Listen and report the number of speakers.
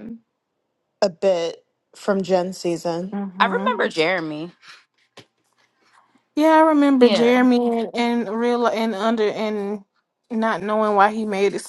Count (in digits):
3